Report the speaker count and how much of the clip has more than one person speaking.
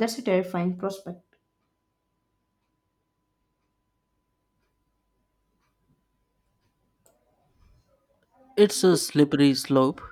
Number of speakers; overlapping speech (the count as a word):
two, no overlap